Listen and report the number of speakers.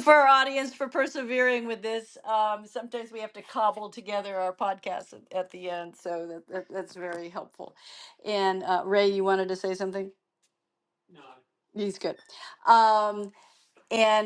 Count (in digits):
1